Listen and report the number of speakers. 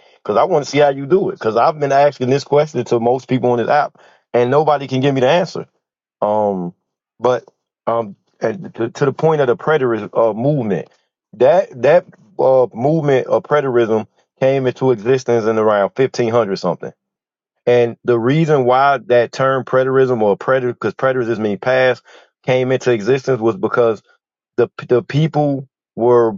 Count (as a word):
one